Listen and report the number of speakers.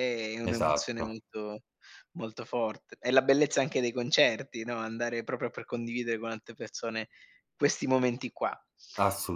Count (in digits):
2